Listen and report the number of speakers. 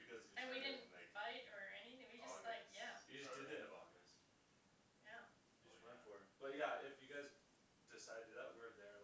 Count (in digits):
3